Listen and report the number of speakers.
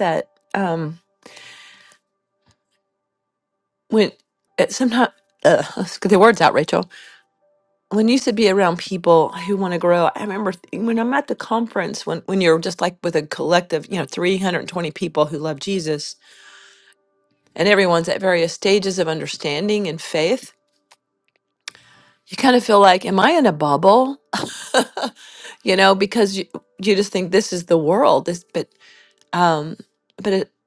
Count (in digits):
1